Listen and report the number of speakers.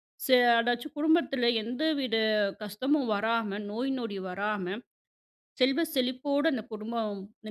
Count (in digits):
1